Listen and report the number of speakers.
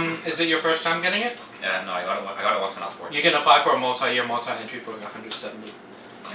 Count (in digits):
2